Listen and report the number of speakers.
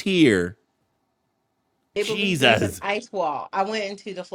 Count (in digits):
2